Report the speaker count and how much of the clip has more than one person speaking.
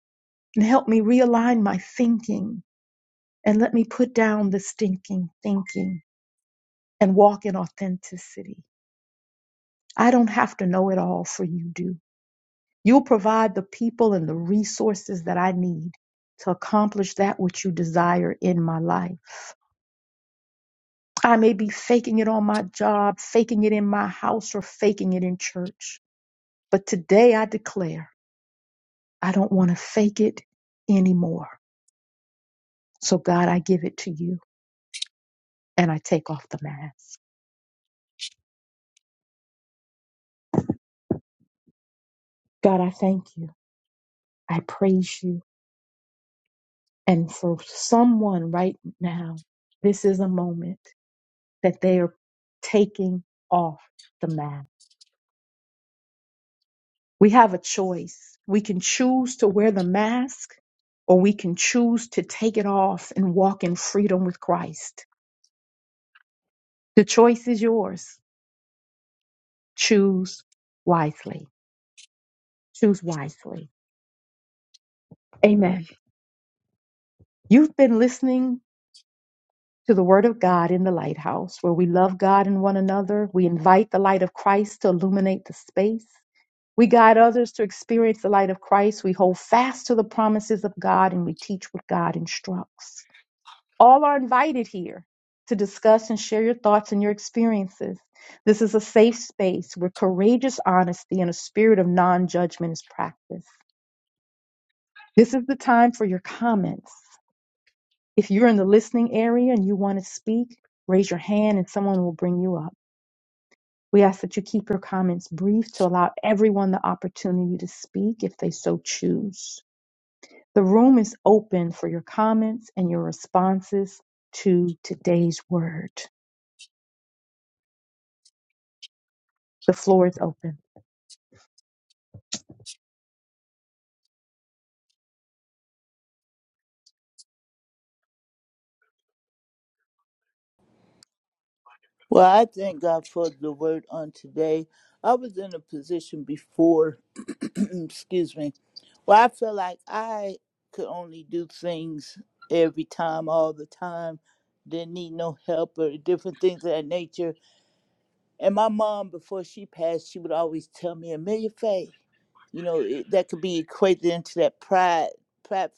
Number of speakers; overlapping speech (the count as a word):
two, no overlap